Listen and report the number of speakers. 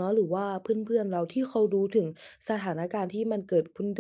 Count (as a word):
one